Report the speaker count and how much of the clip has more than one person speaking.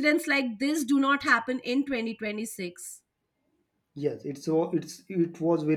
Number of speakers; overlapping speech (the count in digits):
2, no overlap